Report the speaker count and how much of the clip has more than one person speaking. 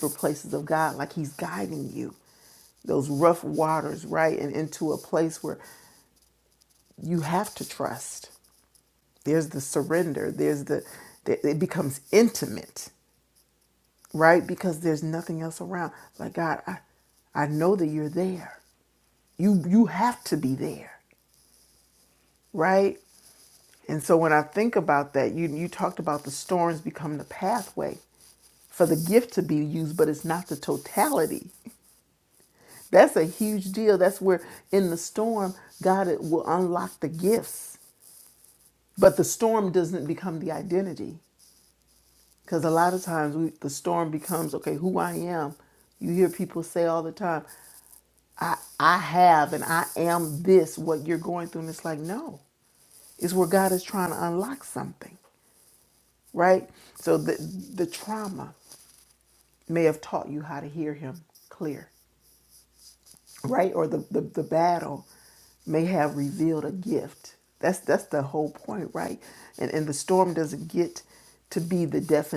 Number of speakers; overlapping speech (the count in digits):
1, no overlap